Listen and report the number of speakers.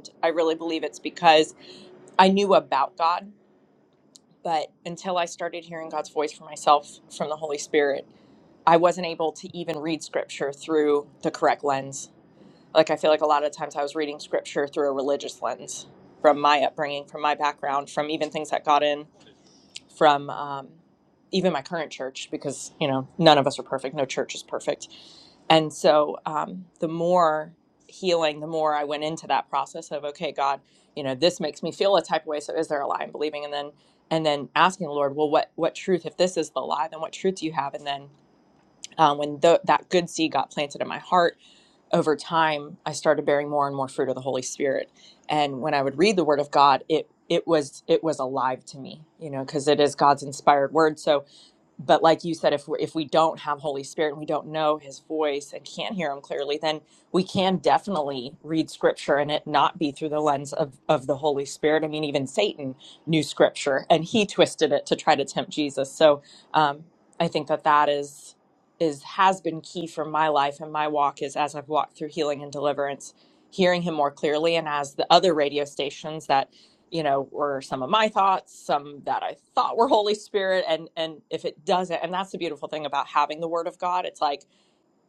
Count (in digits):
1